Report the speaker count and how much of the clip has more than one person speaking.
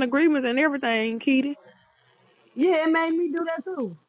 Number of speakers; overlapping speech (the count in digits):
2, no overlap